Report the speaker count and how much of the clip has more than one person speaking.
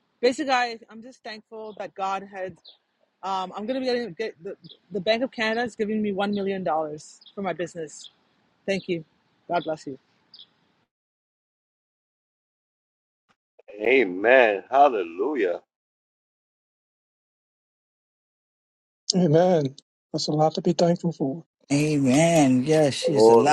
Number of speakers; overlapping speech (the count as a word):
four, about 2%